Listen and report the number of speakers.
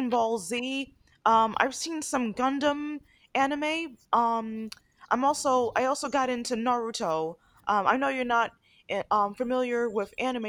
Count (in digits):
1